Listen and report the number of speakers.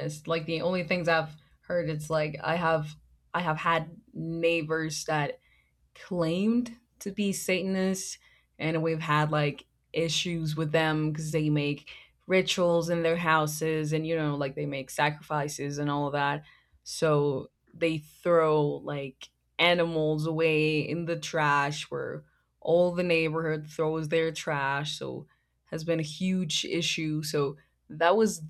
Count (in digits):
1